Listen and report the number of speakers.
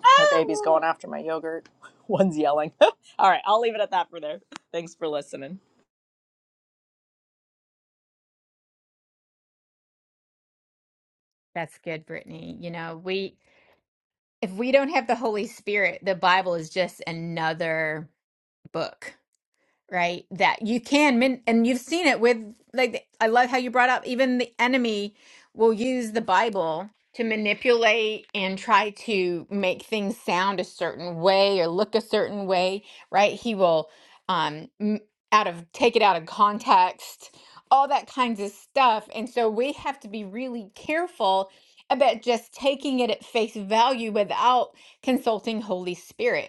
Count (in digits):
2